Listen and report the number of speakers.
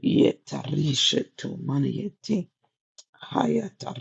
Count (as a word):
one